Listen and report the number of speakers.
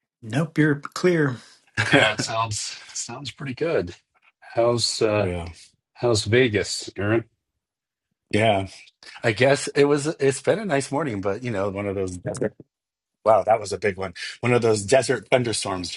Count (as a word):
three